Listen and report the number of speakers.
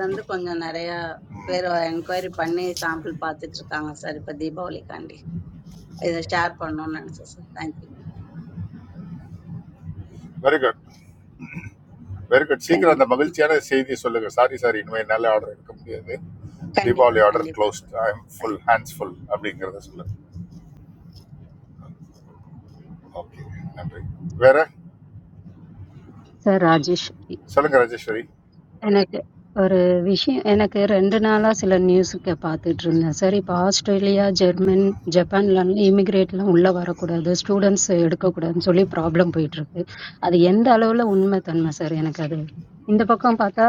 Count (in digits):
3